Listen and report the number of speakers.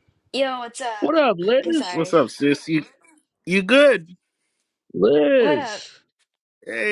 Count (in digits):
3